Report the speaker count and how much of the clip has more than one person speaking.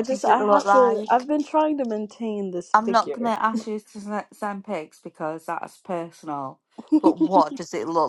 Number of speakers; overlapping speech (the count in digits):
2, about 20%